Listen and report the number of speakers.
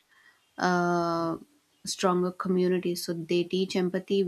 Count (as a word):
one